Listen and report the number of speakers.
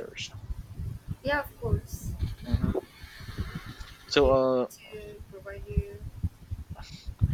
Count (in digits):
2